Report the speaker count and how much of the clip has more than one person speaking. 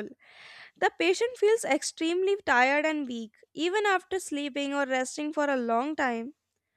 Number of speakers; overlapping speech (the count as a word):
one, no overlap